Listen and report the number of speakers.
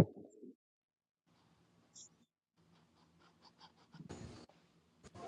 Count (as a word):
zero